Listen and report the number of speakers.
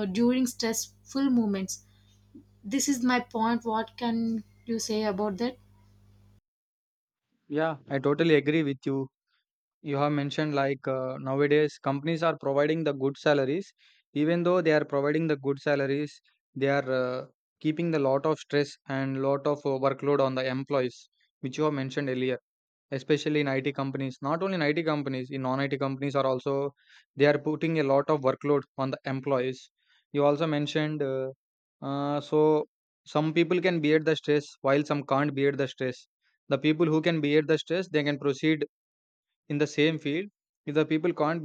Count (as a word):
two